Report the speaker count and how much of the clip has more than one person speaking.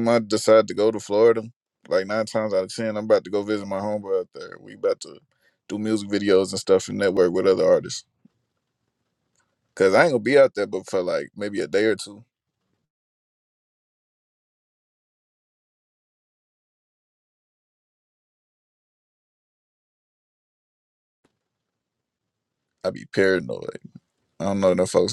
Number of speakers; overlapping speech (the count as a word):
one, no overlap